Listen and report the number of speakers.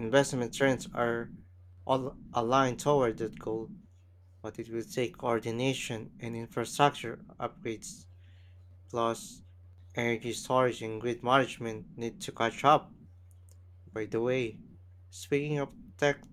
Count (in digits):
1